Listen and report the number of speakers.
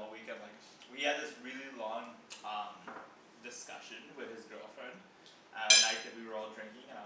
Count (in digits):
1